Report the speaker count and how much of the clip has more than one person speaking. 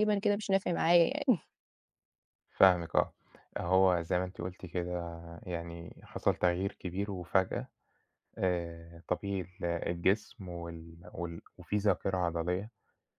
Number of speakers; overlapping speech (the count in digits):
2, no overlap